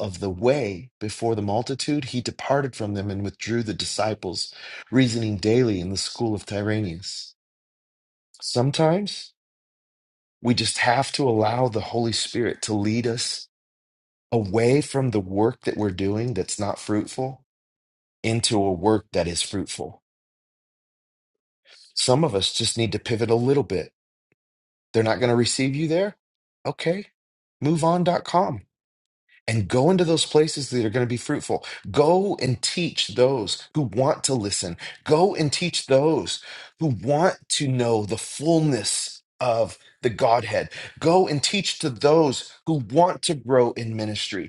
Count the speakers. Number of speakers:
one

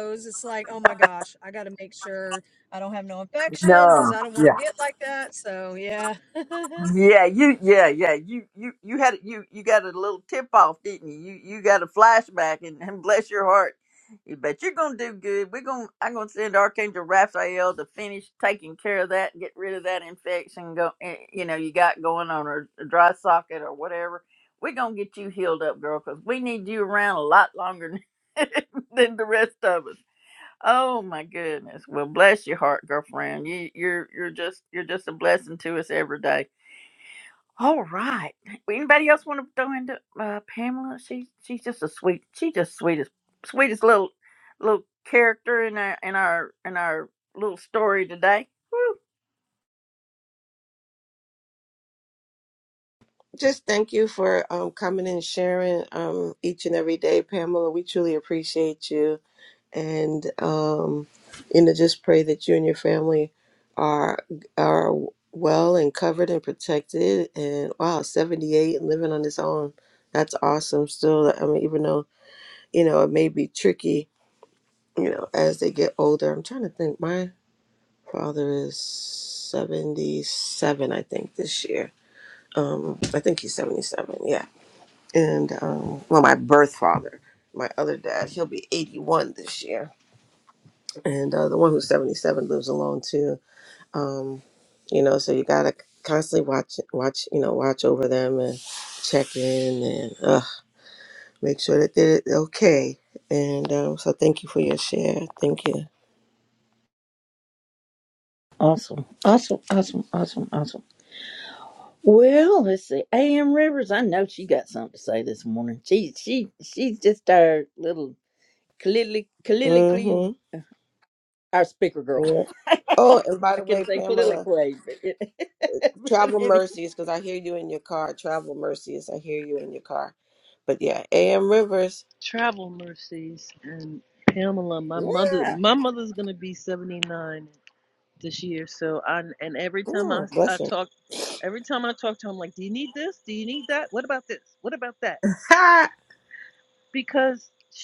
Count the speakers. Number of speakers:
four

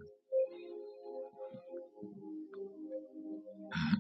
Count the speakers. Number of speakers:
zero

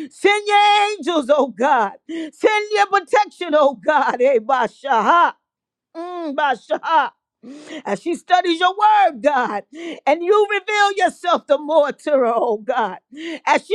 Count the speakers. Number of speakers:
one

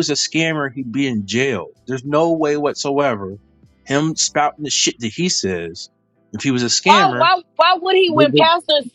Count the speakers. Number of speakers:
two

